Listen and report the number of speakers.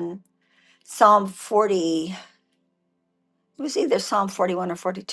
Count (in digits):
1